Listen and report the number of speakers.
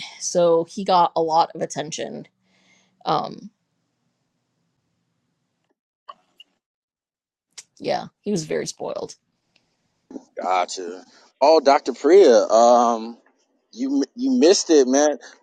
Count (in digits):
2